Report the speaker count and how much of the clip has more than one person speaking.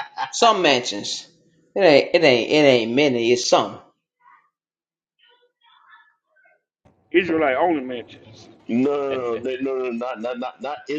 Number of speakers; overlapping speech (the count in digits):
3, no overlap